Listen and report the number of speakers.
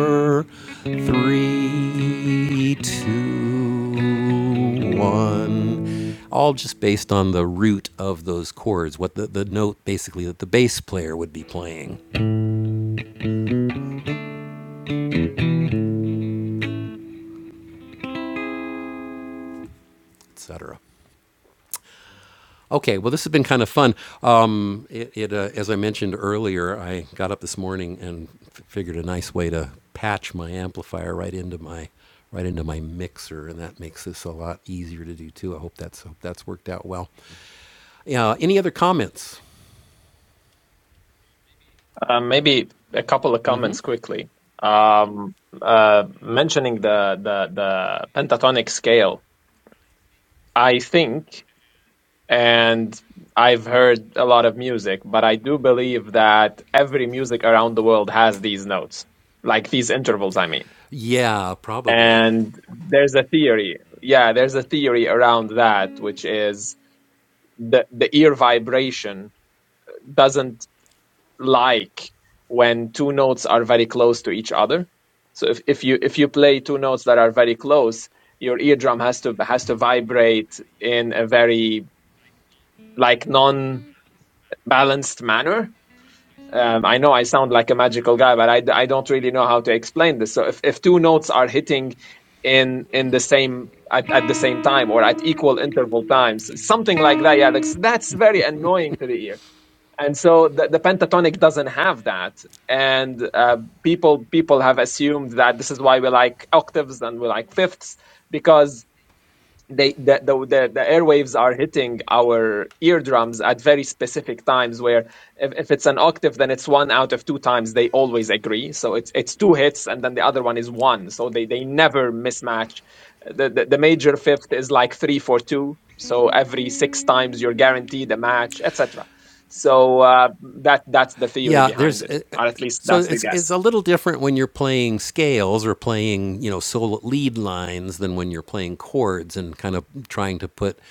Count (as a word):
two